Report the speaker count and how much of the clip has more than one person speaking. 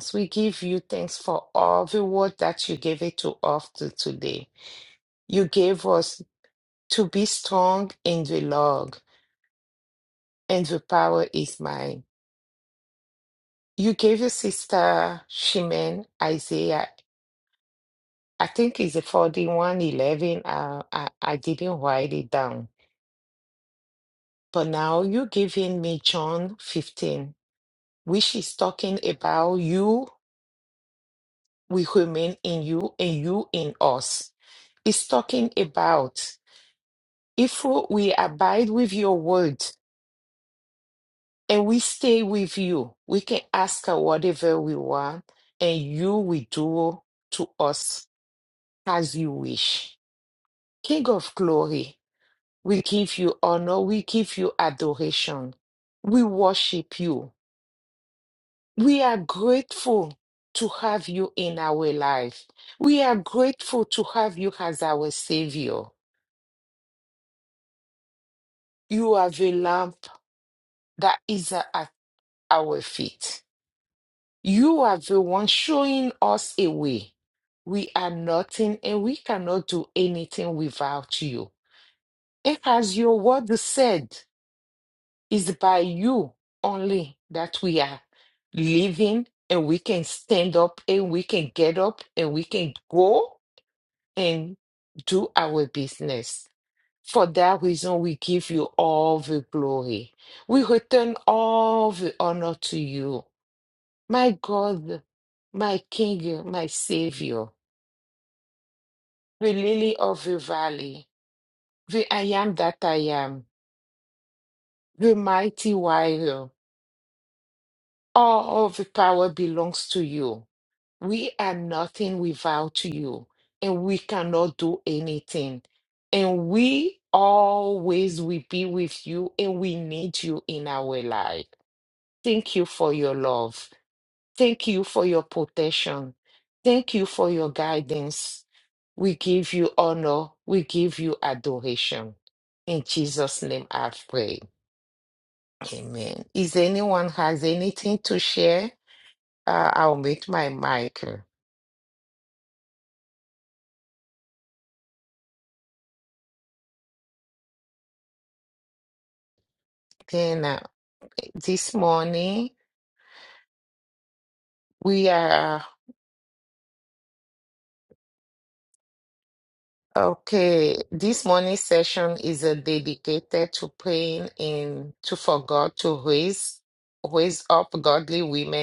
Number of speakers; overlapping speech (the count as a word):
one, no overlap